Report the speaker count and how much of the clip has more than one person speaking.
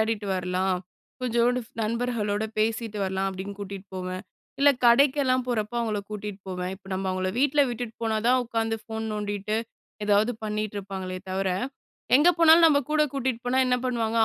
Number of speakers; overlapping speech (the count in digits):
1, no overlap